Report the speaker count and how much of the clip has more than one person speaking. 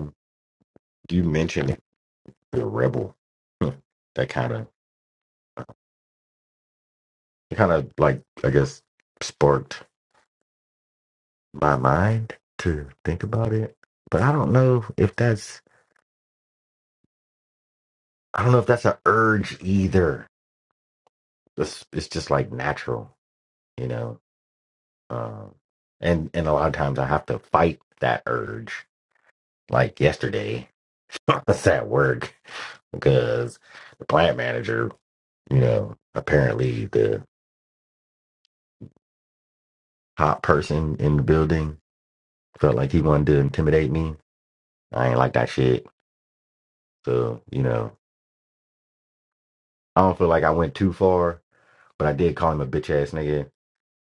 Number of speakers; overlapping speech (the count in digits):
1, no overlap